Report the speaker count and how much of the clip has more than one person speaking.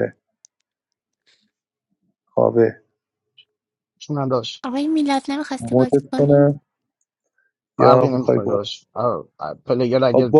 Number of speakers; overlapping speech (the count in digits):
3, about 19%